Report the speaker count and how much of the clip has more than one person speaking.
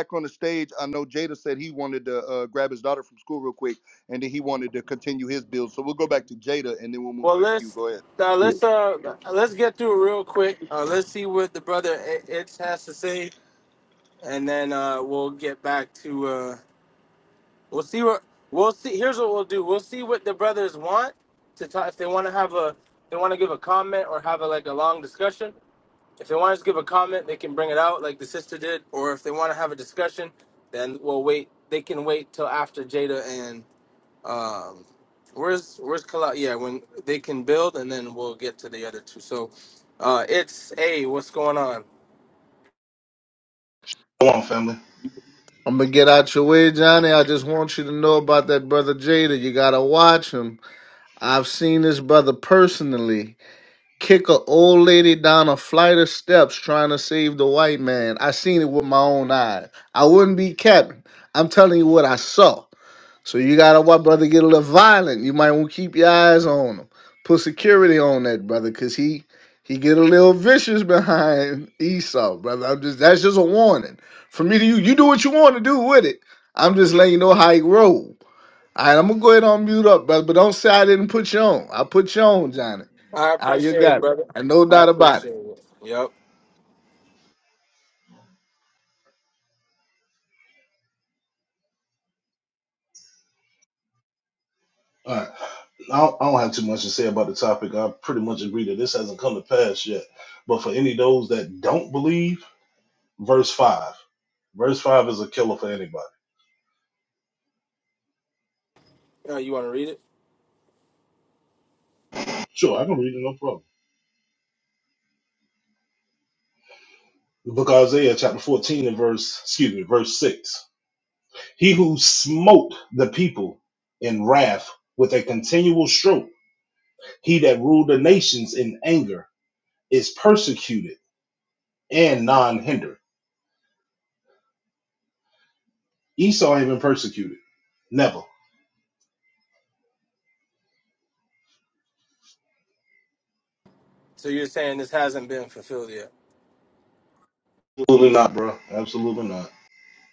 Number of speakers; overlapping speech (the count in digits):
4, about 1%